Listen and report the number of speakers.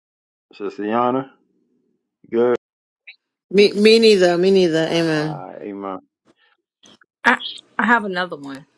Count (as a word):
three